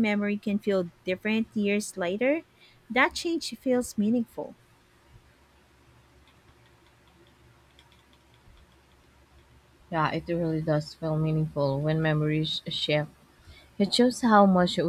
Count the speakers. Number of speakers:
2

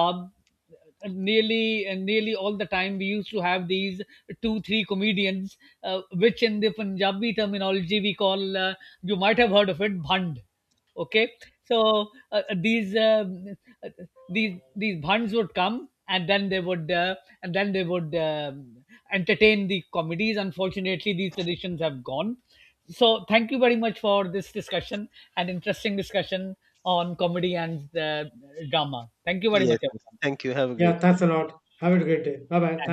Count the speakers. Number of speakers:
3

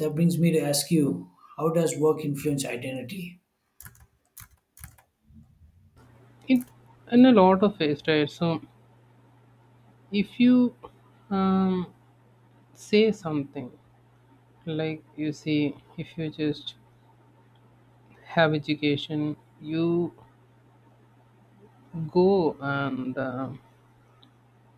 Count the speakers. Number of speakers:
2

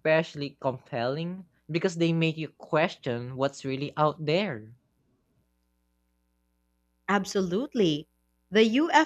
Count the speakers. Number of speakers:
2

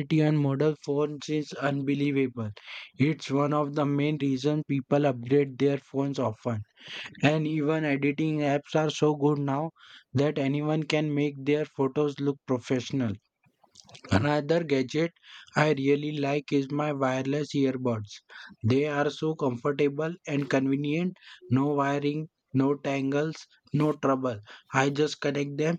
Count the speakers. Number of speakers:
1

